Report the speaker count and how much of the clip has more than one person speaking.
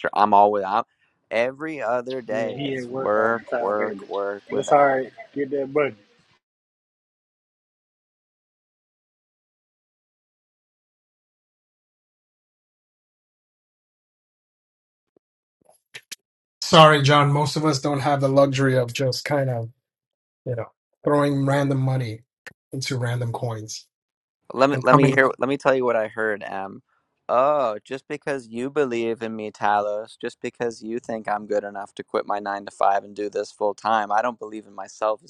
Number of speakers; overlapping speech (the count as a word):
three, about 8%